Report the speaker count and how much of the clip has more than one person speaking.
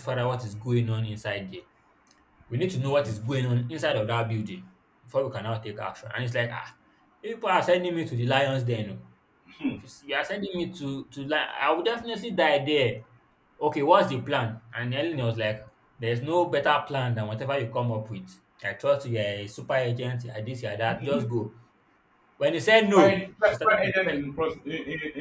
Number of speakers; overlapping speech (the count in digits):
2, about 5%